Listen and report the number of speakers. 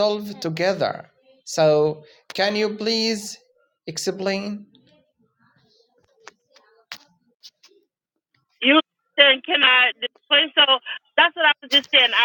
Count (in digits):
2